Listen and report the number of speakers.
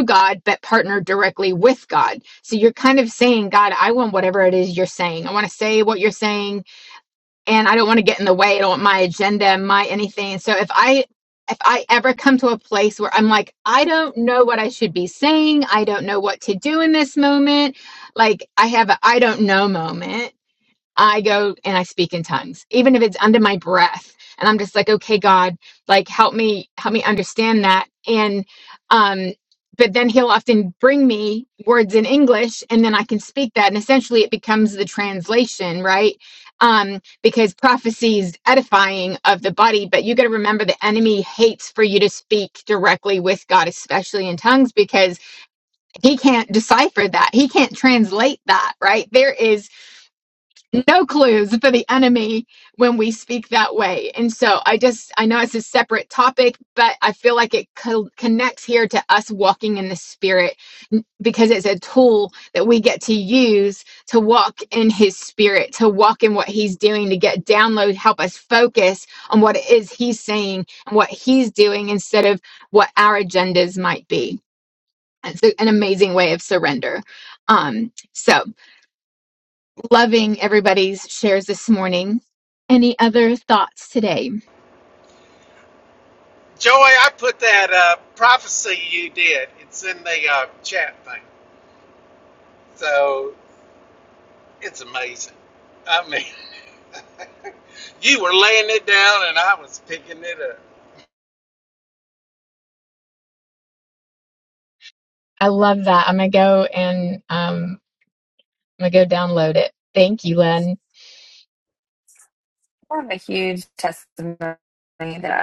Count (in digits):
3